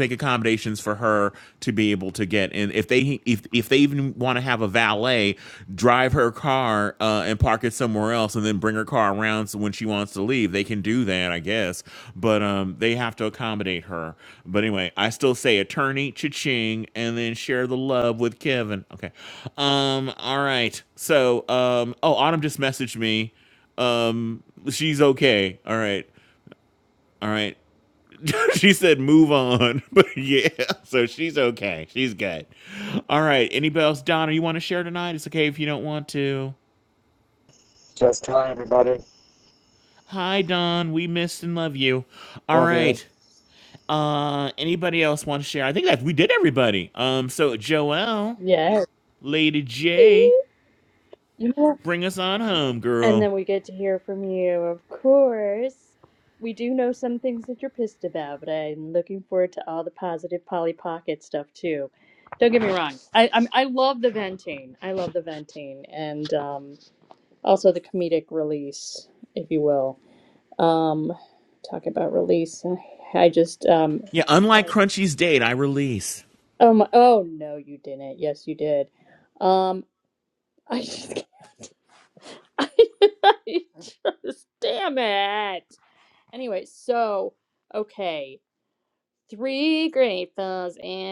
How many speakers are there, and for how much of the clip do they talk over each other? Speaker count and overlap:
three, about 1%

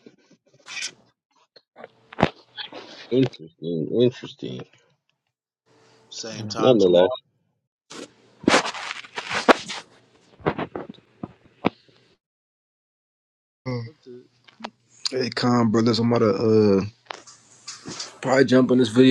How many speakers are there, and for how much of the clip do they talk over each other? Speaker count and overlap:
three, about 3%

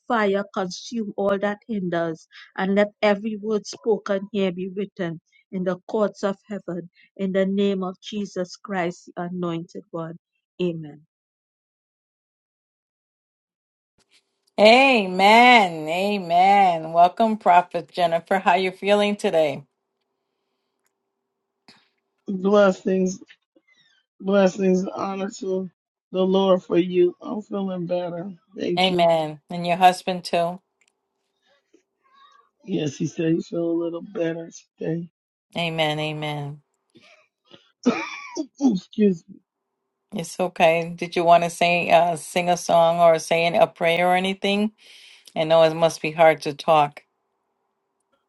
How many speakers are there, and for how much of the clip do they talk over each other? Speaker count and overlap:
three, about 1%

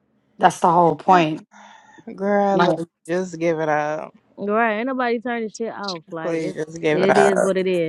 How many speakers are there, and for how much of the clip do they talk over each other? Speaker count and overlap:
three, about 14%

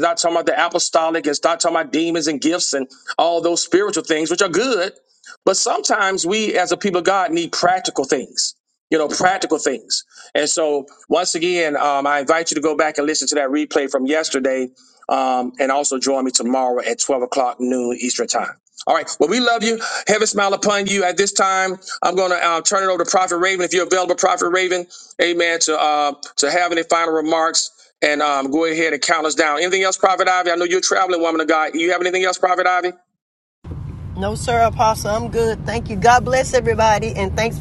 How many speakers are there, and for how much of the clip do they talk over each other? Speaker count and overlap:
two, no overlap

